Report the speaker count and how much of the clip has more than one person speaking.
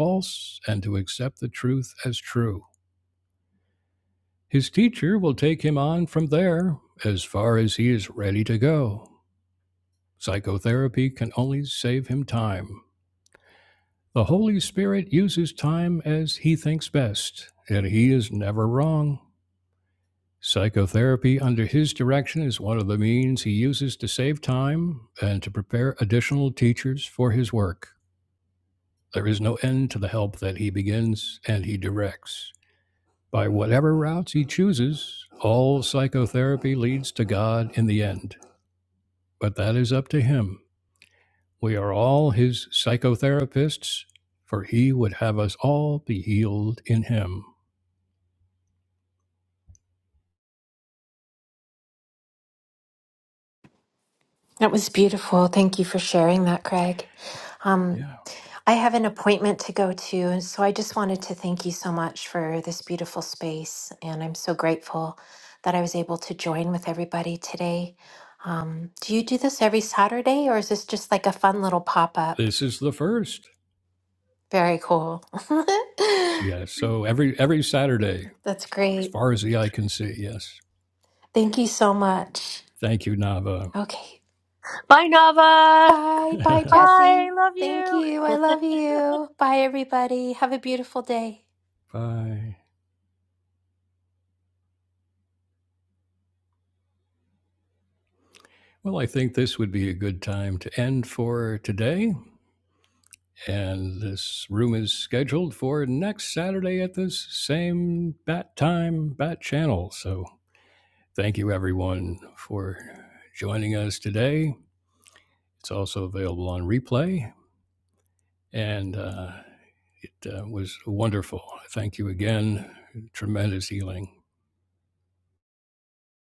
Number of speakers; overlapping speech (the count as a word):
three, about 1%